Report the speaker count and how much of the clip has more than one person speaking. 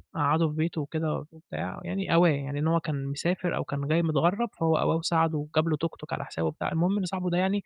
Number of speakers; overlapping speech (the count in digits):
1, no overlap